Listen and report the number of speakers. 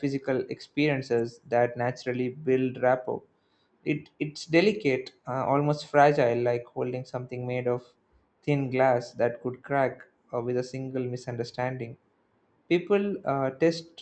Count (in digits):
1